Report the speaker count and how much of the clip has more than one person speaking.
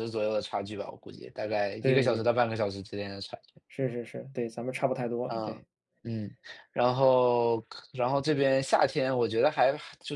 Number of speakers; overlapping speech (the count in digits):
2, about 7%